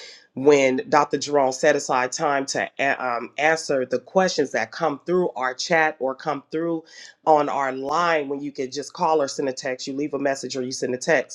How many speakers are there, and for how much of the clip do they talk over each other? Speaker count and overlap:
1, no overlap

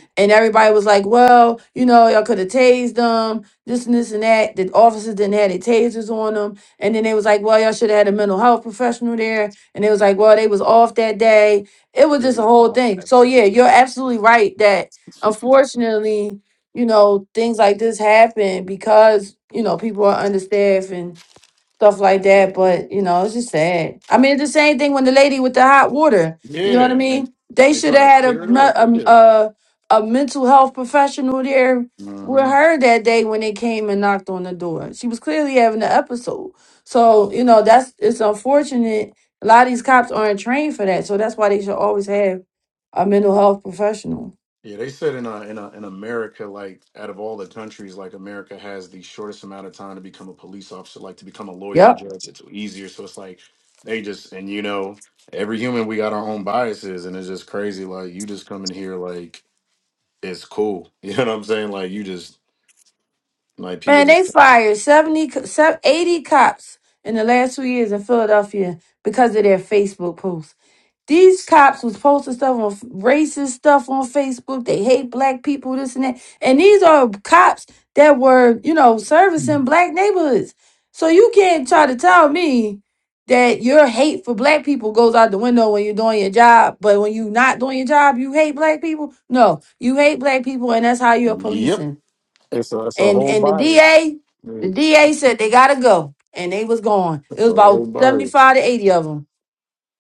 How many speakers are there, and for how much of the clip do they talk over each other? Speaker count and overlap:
2, about 7%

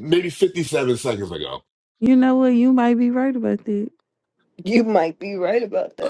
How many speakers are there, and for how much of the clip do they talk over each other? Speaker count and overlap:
3, no overlap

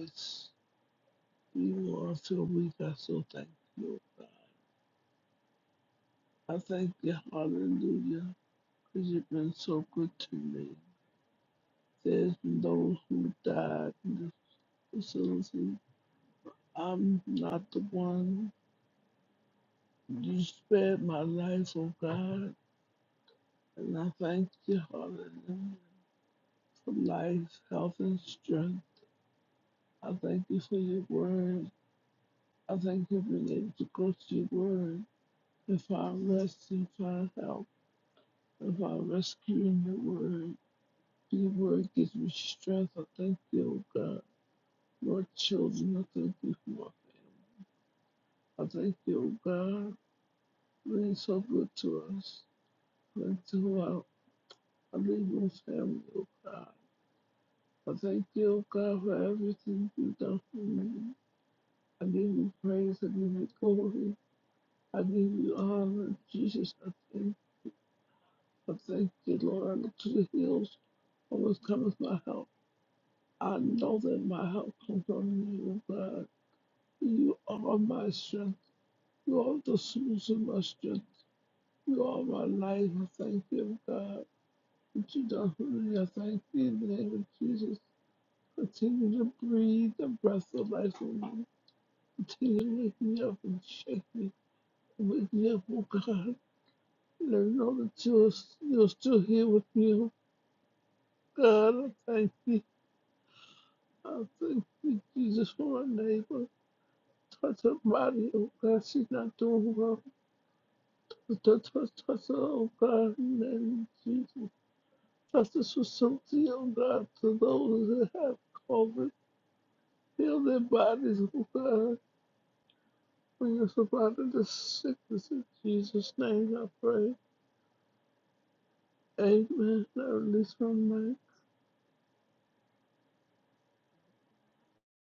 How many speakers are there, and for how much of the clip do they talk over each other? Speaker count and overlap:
1, no overlap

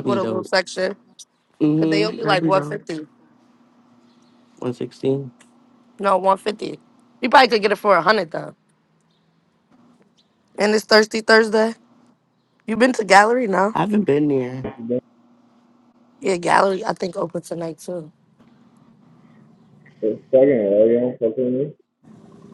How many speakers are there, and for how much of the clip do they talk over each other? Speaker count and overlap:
3, about 6%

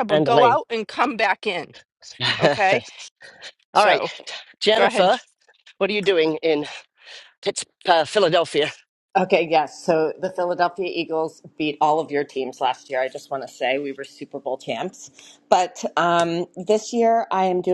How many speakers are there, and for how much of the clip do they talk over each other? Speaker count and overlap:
3, about 7%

